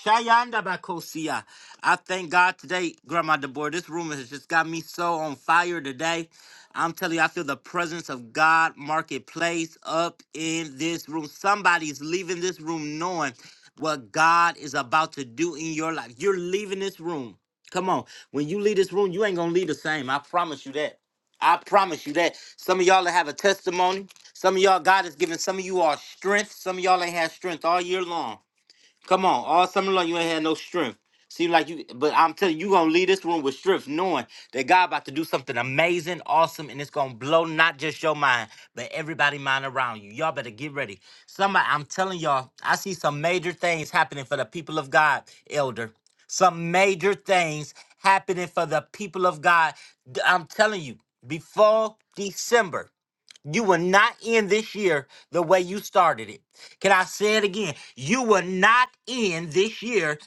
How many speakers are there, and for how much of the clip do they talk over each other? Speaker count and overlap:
one, no overlap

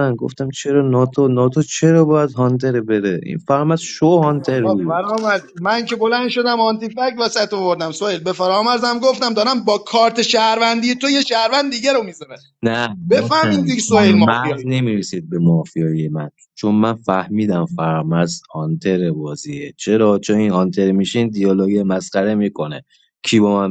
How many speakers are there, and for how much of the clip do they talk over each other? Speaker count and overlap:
two, about 9%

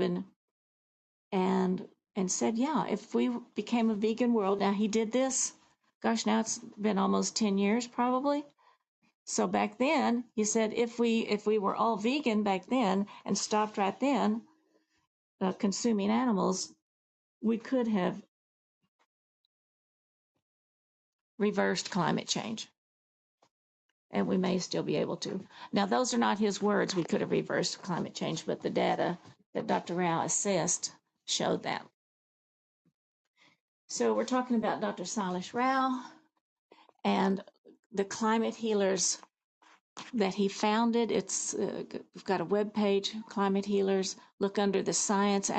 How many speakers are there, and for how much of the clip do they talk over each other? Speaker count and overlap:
one, no overlap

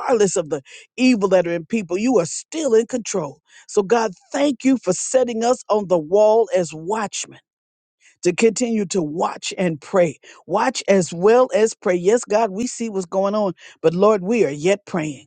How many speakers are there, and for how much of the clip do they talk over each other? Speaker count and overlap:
one, no overlap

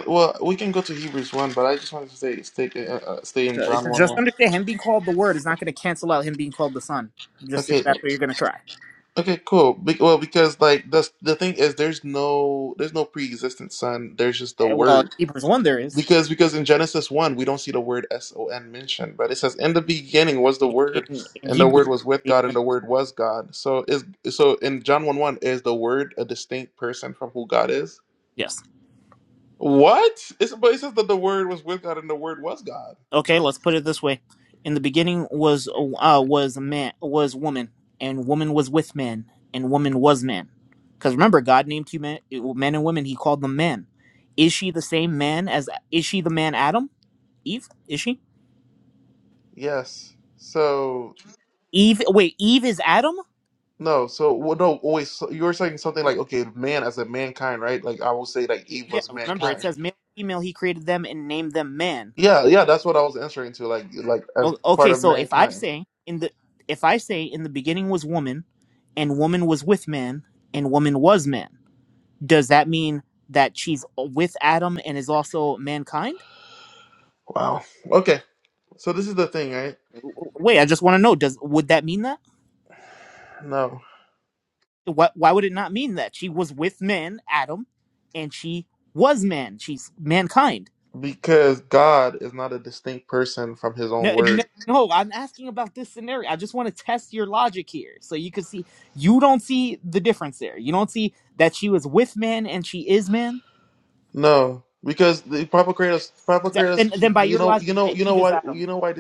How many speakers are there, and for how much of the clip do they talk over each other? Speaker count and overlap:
two, about 6%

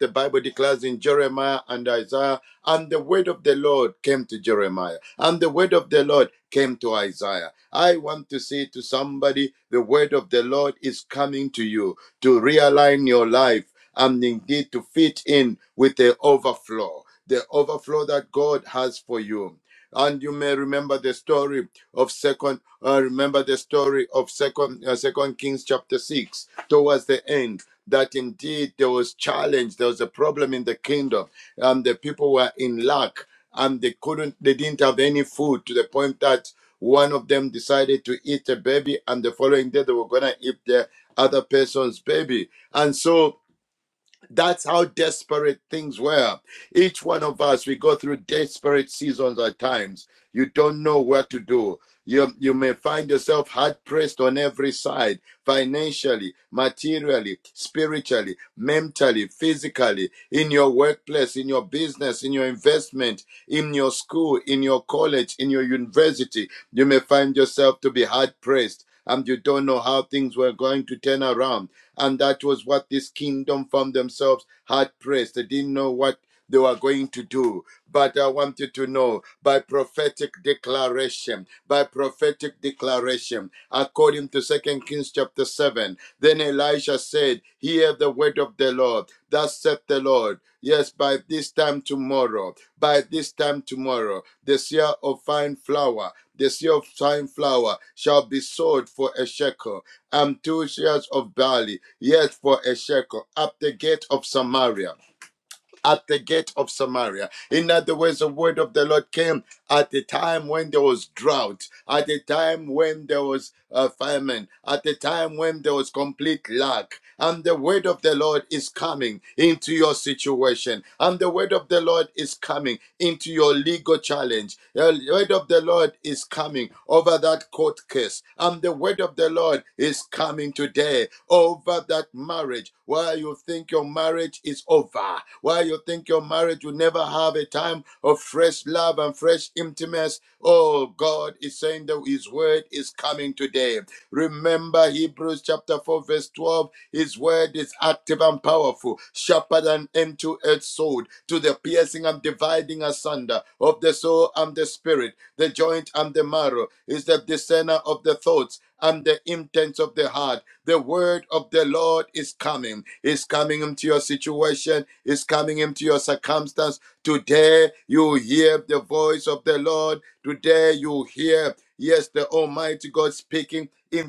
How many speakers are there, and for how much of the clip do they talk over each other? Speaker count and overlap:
one, no overlap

